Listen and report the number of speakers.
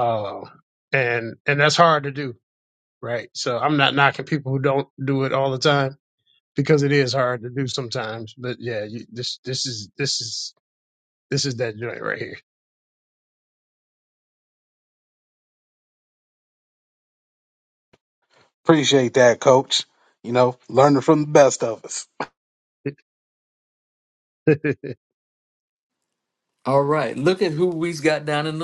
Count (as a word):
three